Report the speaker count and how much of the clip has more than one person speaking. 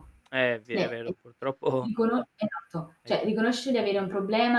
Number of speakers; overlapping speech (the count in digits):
2, about 18%